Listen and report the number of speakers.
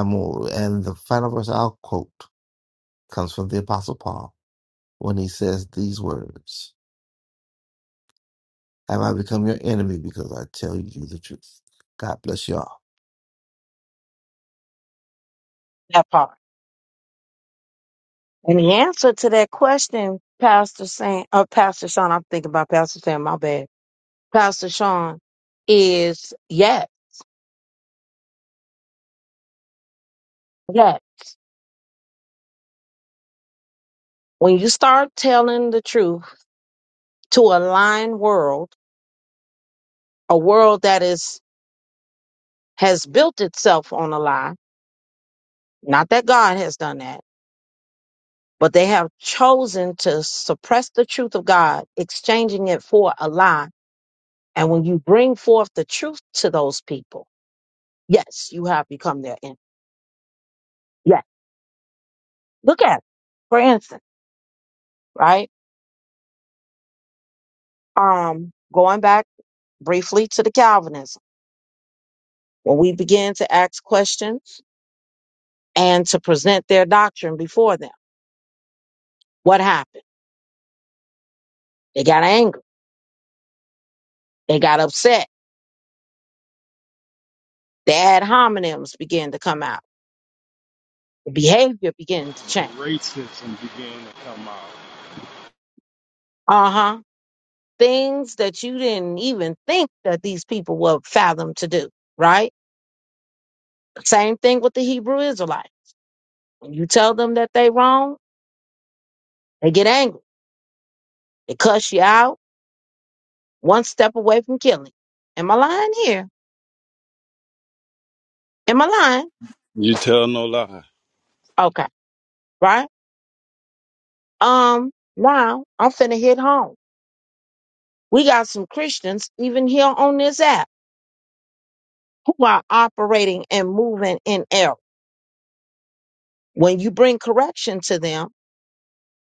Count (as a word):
four